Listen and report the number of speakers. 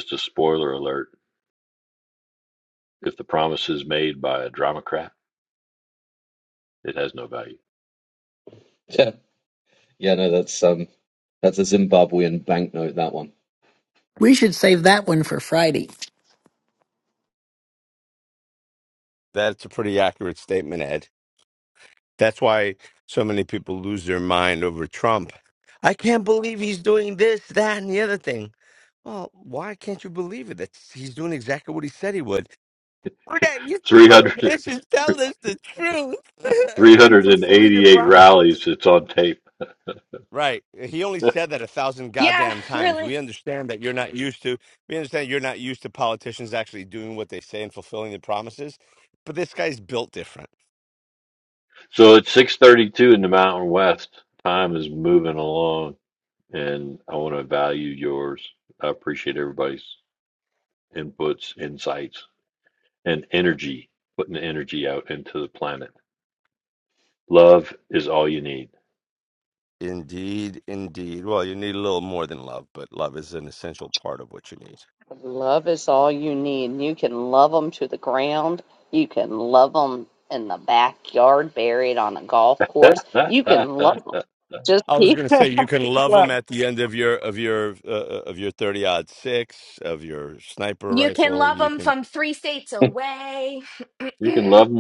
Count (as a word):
six